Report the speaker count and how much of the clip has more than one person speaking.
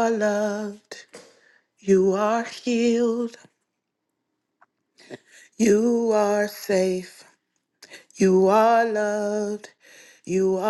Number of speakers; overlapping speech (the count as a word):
one, no overlap